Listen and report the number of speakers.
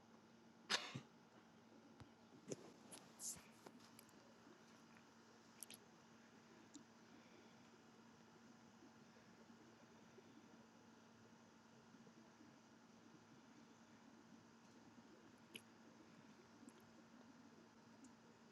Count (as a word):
zero